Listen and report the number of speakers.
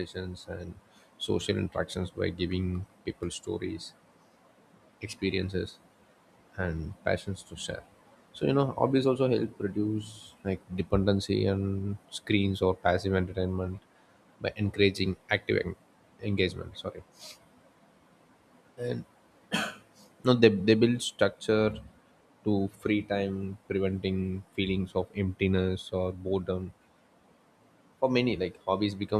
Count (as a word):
one